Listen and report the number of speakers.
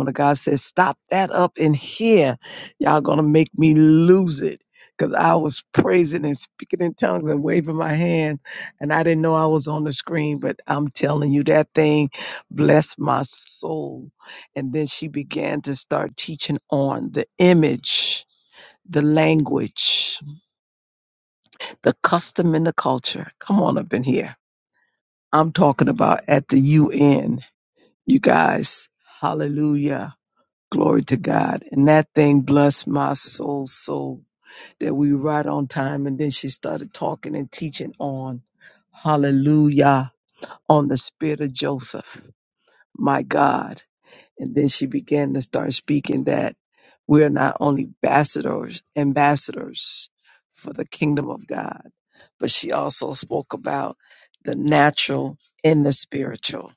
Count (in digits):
1